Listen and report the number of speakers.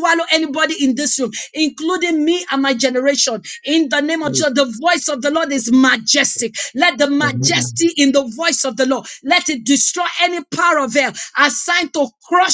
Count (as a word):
one